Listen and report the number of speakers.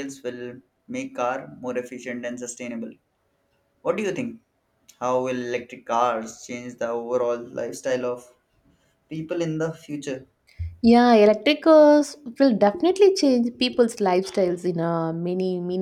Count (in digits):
2